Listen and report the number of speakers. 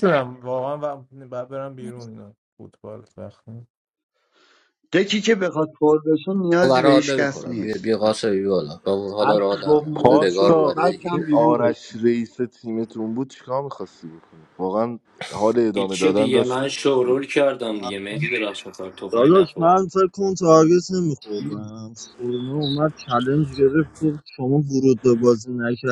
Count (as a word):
six